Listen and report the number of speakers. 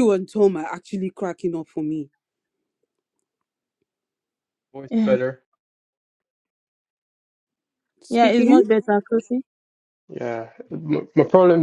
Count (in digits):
3